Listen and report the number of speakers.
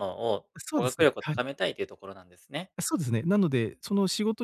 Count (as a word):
two